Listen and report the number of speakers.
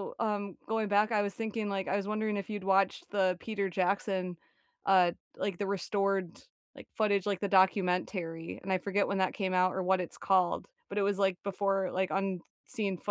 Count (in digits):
1